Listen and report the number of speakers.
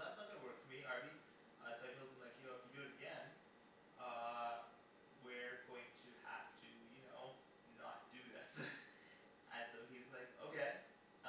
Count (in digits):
1